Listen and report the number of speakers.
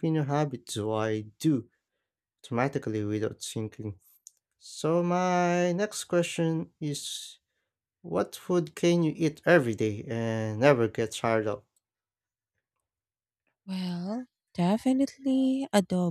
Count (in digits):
2